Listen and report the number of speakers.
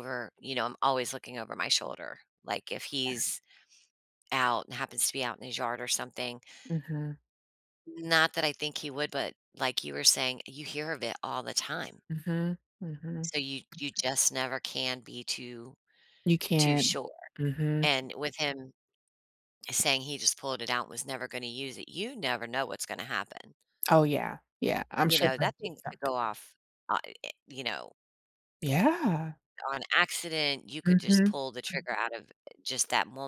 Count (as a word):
two